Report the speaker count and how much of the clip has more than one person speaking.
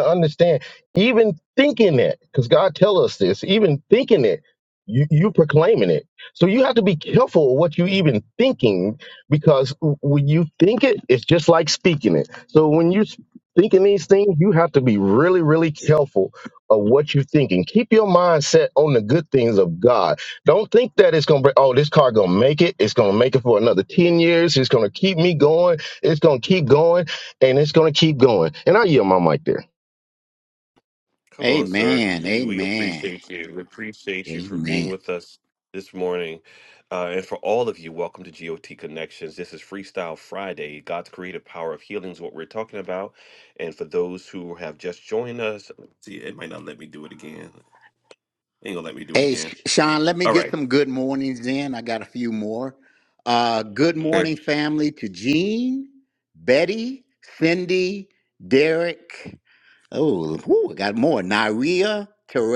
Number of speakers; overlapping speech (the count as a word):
three, about 5%